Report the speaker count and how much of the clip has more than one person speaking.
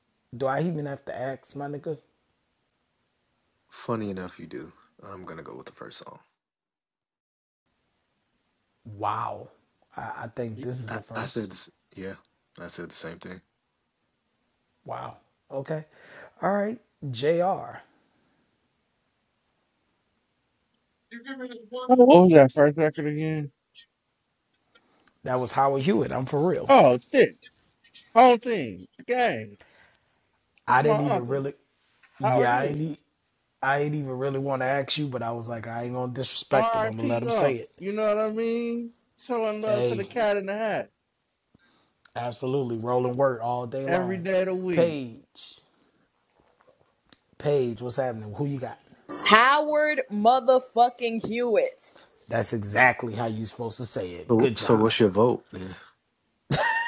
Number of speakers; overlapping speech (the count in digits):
4, about 8%